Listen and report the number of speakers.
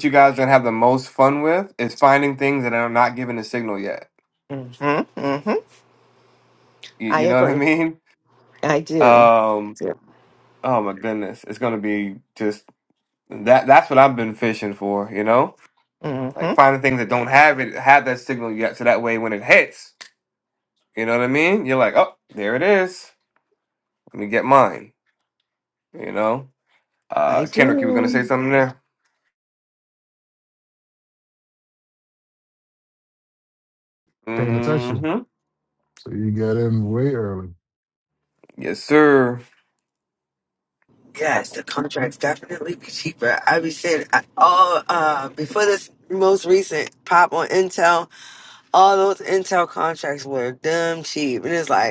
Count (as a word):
four